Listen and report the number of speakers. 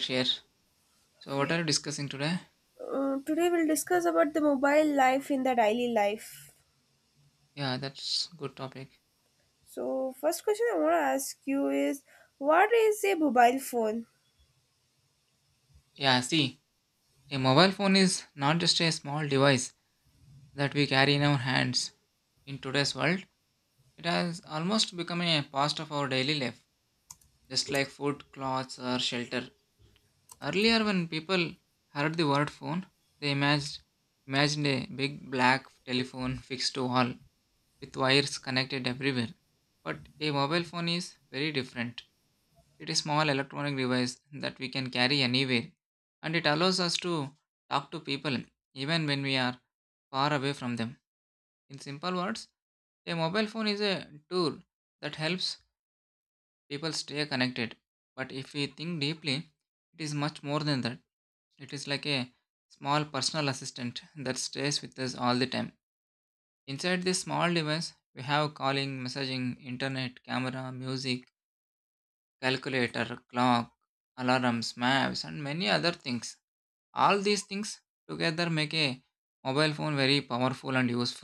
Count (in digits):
2